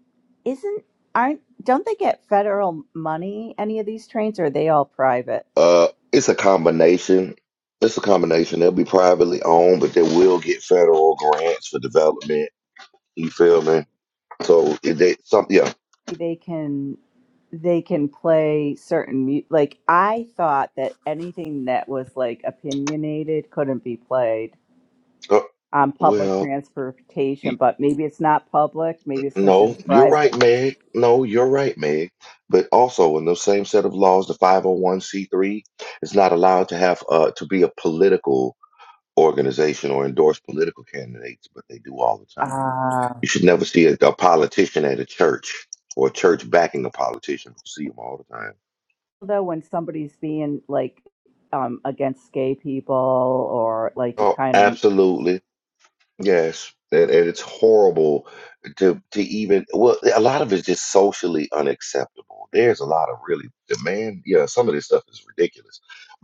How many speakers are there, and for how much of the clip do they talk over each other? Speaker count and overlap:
2, about 3%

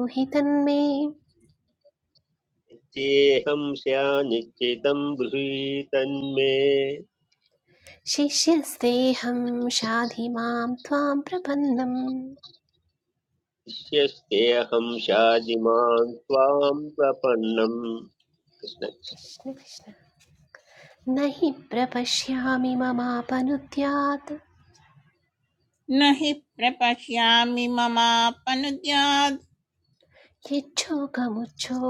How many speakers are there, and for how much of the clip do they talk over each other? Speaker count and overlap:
3, no overlap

